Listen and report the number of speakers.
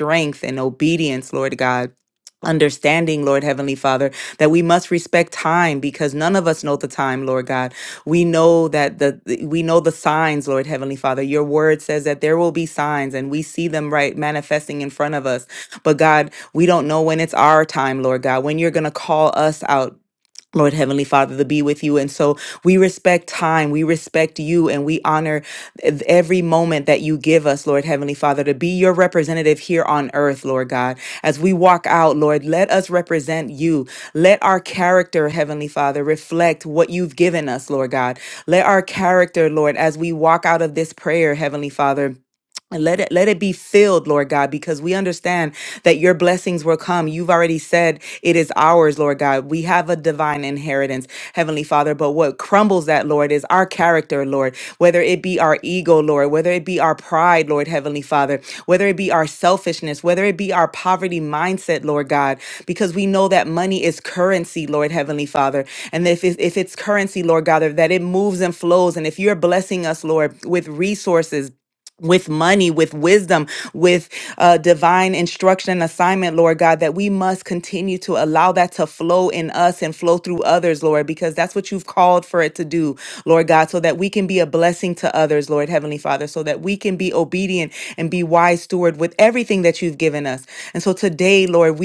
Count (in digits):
1